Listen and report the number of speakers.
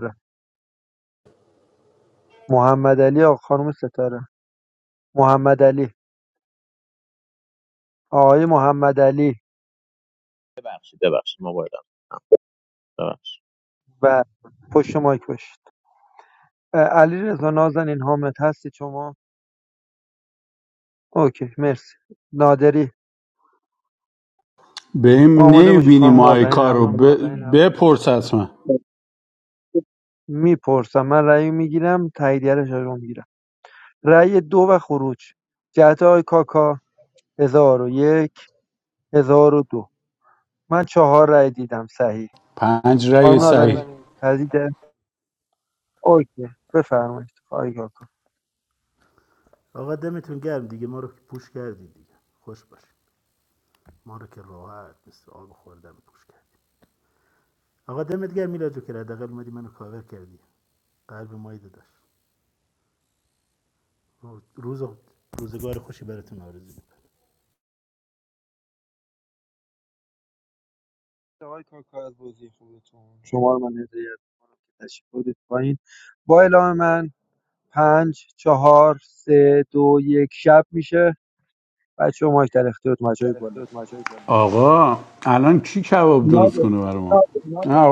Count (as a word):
four